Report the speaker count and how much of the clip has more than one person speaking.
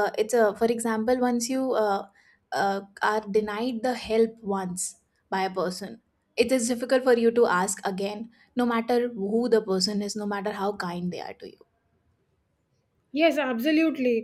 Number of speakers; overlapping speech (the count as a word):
two, no overlap